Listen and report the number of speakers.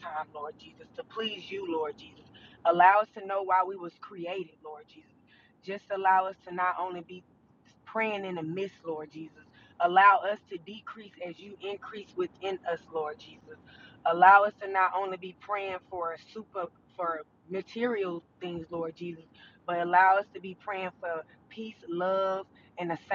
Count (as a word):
one